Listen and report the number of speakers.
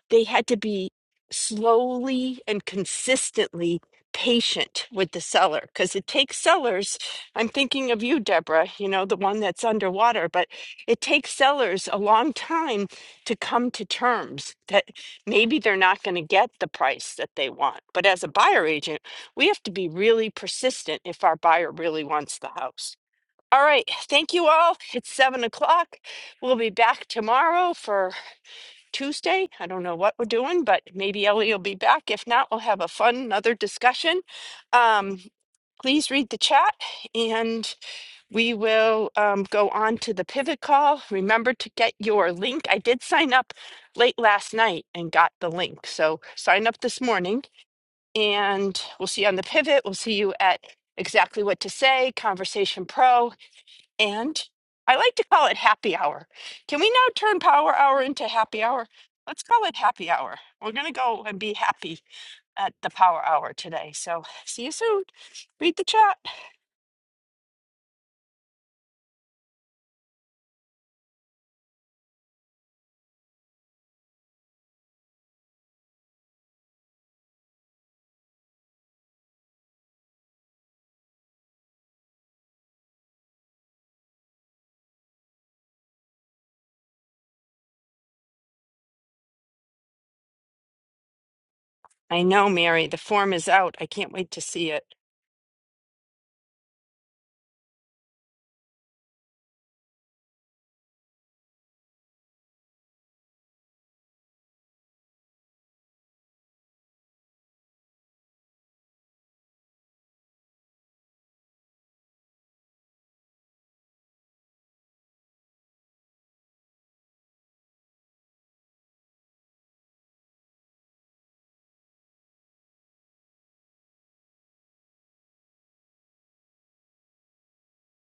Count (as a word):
one